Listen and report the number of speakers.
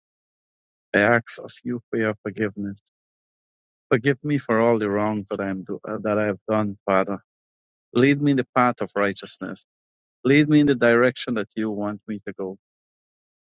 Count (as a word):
one